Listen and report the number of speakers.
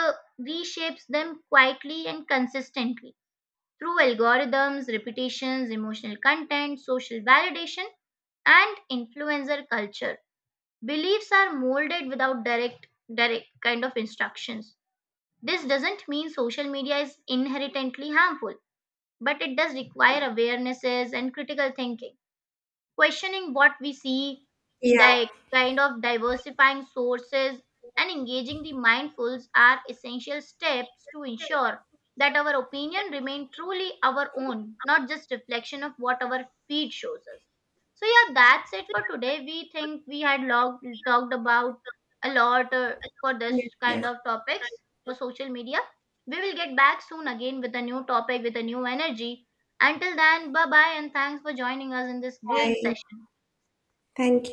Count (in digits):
2